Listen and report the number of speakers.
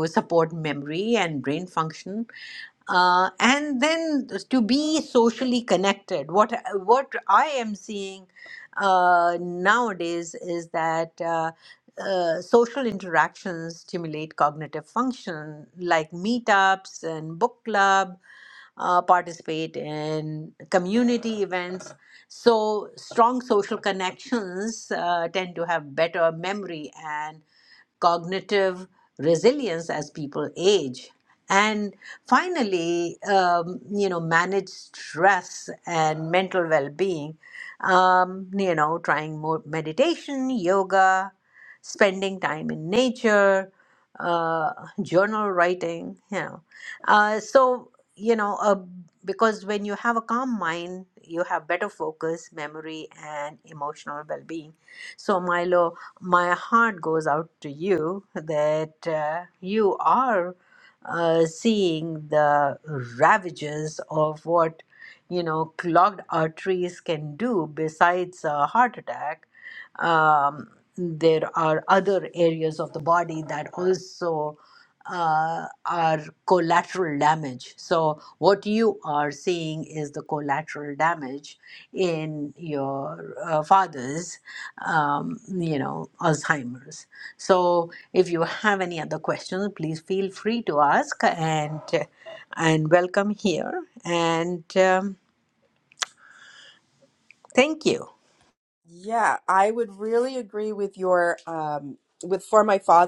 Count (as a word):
two